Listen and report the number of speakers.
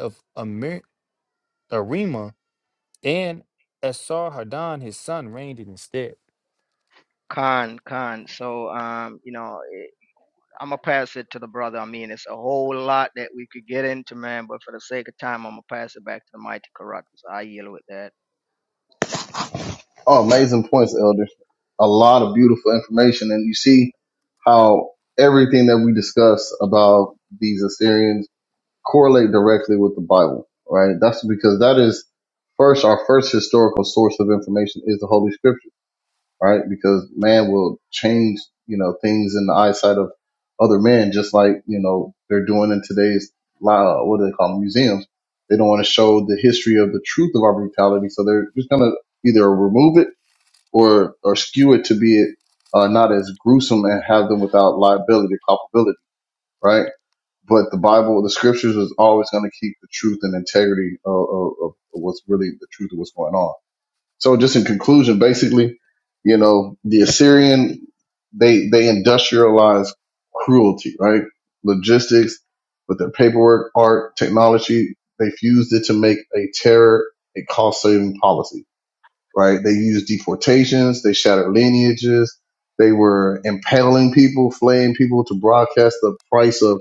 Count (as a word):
three